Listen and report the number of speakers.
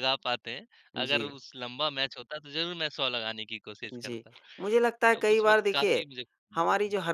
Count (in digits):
2